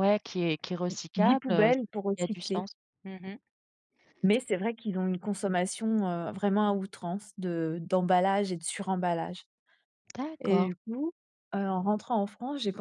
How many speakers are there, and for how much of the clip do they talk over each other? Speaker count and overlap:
2, about 12%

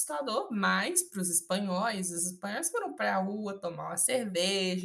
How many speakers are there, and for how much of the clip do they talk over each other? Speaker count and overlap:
1, no overlap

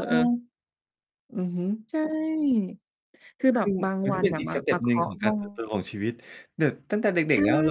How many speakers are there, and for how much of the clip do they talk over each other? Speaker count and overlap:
2, about 27%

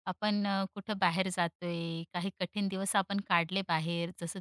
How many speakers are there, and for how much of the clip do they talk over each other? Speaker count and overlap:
1, no overlap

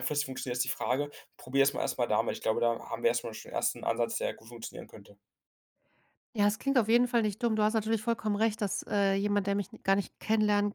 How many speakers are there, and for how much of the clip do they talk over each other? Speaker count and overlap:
2, no overlap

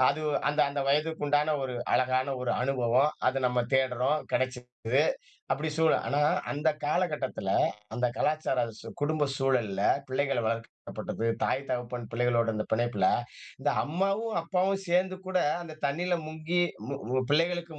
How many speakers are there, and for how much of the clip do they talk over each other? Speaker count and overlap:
1, no overlap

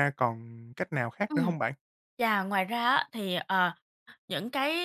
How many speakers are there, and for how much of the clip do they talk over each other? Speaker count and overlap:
2, about 5%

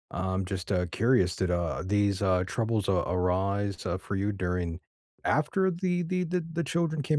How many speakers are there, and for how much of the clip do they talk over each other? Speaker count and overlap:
1, no overlap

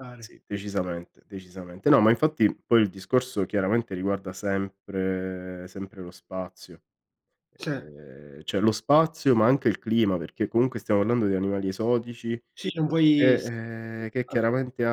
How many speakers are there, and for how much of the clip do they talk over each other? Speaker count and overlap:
2, about 3%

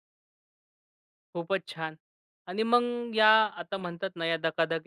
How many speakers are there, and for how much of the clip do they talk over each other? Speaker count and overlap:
1, no overlap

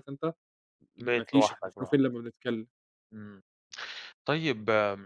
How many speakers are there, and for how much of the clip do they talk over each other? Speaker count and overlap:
2, about 19%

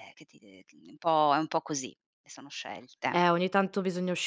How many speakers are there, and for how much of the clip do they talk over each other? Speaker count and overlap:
2, about 2%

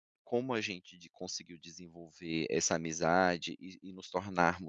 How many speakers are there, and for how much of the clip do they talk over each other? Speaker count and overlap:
1, no overlap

